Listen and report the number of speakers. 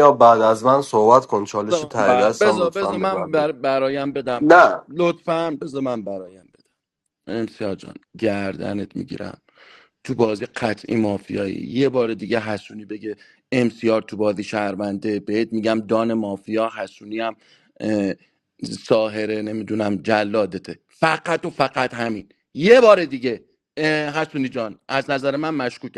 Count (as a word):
two